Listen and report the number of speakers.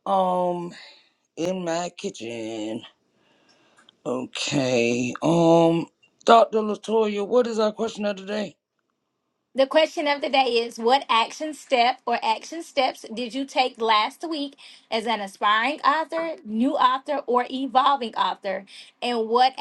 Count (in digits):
2